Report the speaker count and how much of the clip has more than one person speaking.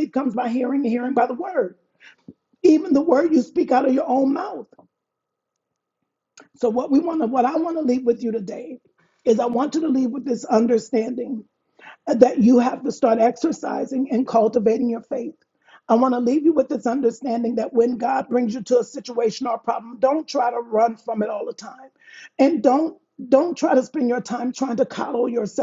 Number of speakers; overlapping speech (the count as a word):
one, no overlap